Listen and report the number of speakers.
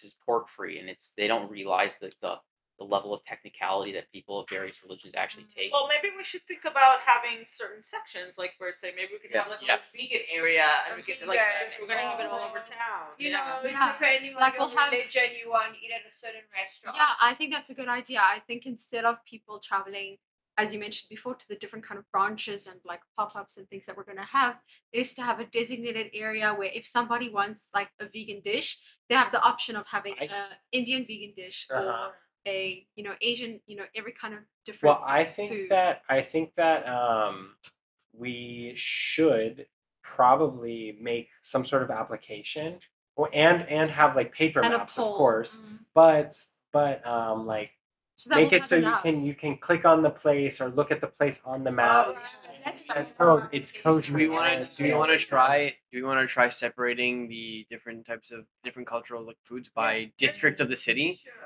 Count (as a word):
six